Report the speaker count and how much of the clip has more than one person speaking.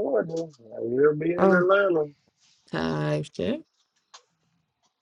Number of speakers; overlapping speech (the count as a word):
two, about 6%